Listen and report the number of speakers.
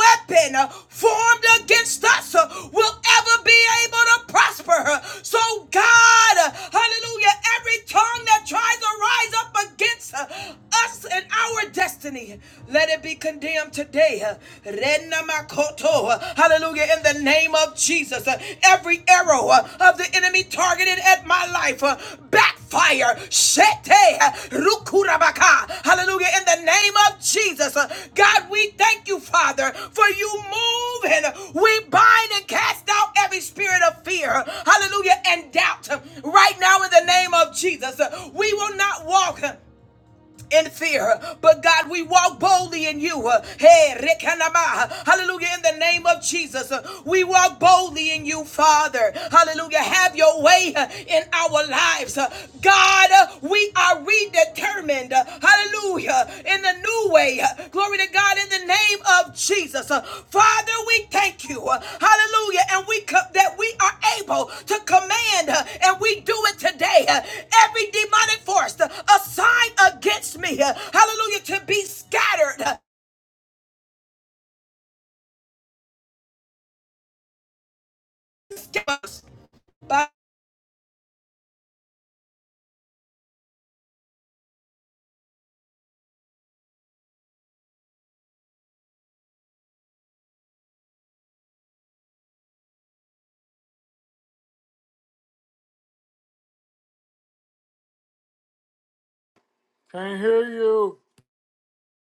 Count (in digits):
2